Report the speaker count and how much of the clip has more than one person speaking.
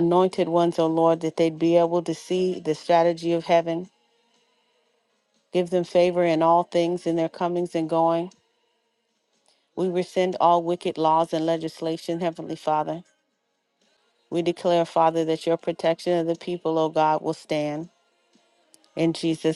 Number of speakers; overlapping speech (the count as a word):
one, no overlap